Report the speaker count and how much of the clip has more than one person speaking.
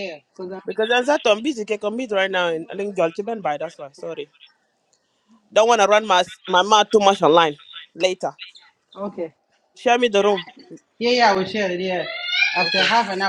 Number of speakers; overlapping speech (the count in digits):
2, about 4%